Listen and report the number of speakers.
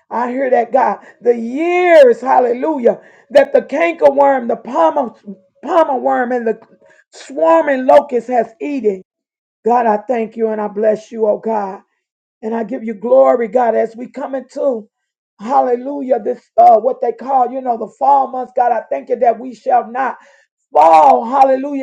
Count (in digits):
1